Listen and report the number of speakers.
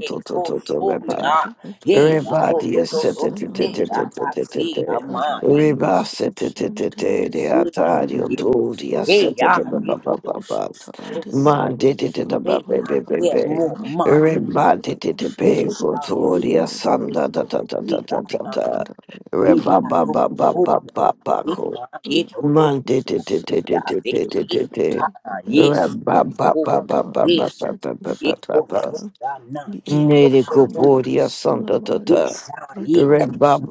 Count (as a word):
three